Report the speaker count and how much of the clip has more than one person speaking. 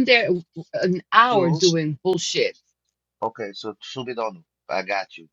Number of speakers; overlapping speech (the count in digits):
2, about 6%